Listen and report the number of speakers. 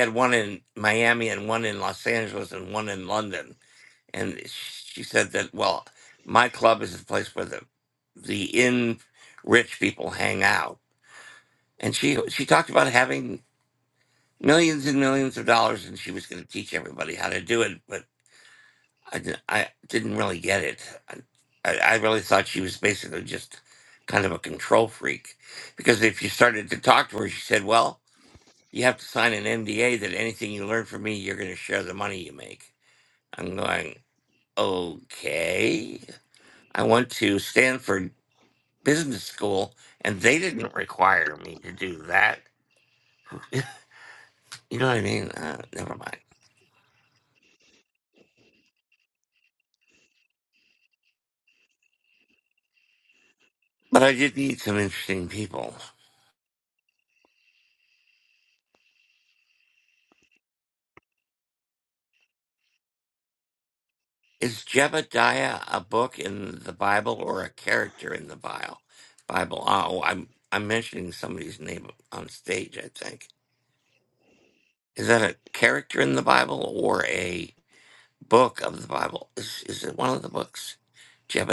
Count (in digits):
1